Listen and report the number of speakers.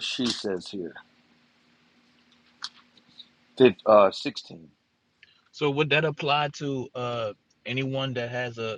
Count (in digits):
2